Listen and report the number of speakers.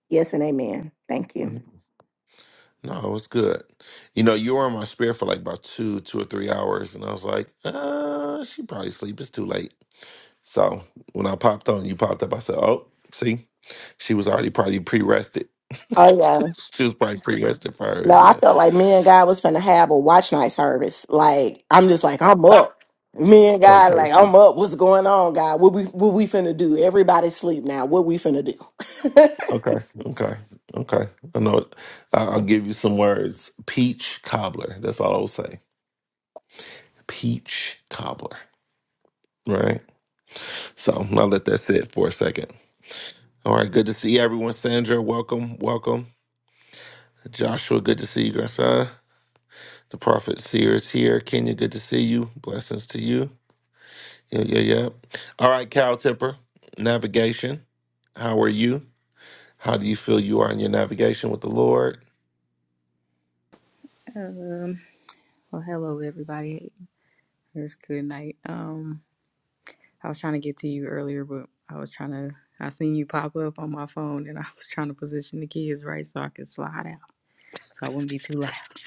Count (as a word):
three